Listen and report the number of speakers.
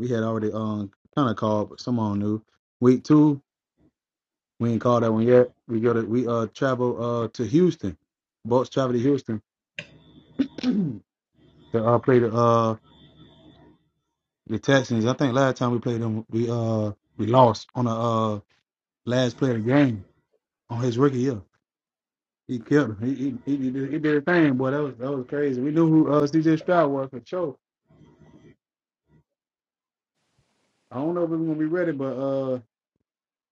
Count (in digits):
1